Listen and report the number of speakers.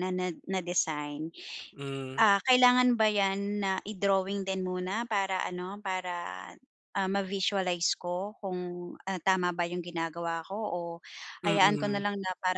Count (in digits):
2